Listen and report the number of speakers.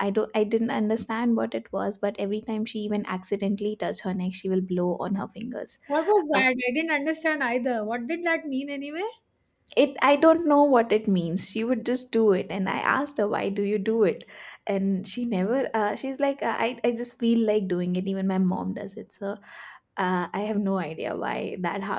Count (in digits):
2